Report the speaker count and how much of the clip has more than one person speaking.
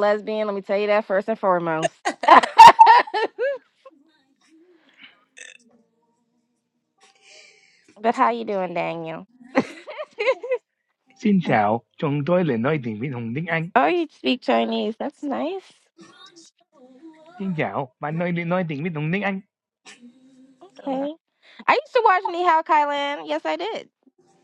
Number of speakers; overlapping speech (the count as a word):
two, no overlap